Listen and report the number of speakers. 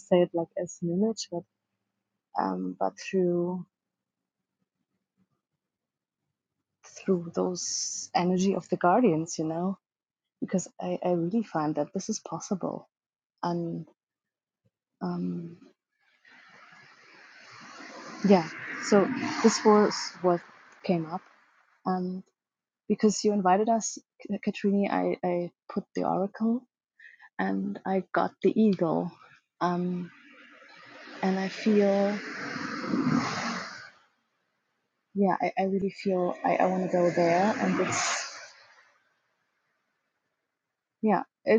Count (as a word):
one